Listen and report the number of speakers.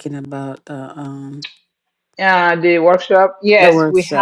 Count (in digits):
2